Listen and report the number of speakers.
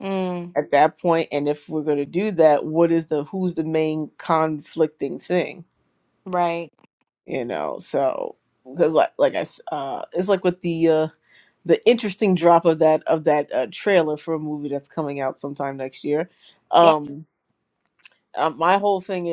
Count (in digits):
2